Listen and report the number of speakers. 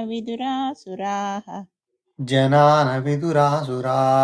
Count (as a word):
two